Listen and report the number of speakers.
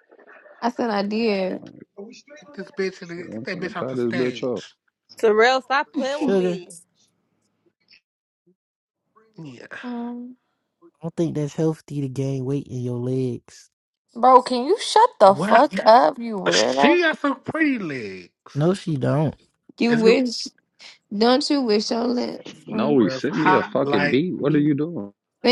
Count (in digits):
6